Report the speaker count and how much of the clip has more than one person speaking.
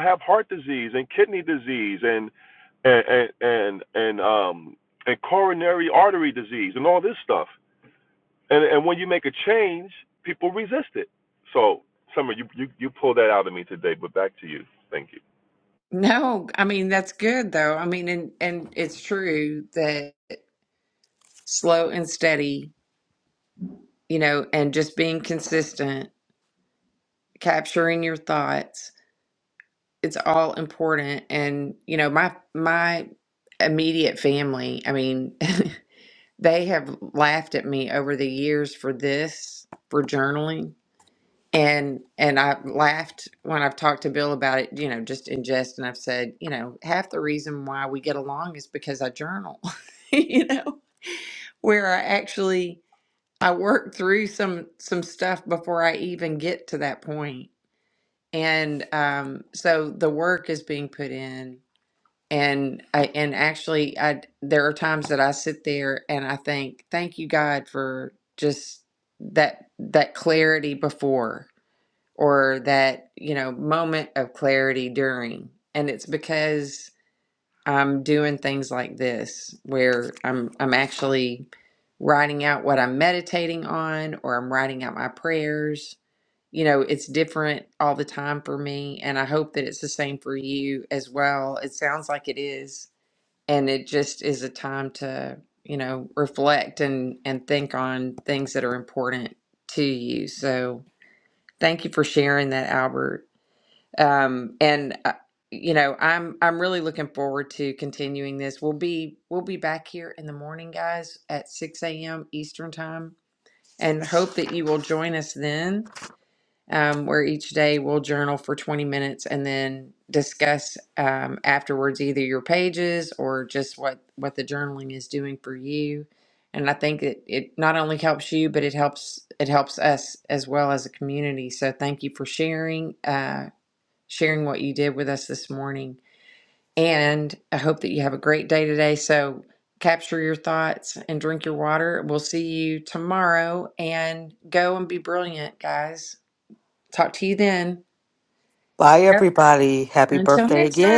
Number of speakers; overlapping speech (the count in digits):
3, about 1%